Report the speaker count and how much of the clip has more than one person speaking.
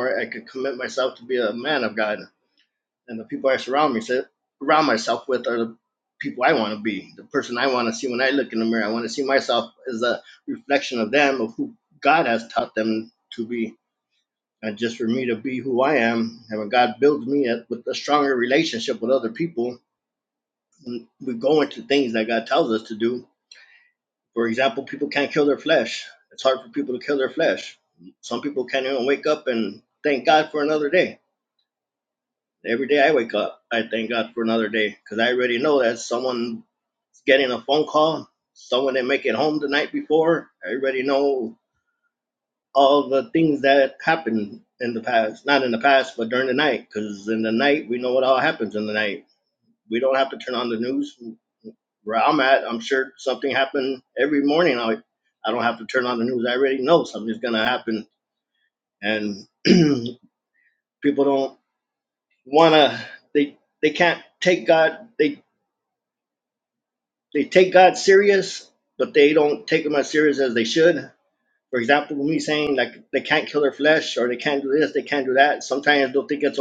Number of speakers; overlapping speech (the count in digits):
1, no overlap